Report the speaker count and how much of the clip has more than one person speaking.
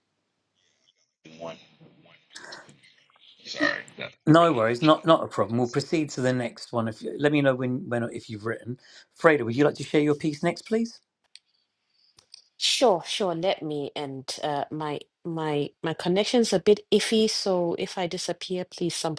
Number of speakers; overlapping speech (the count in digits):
3, about 2%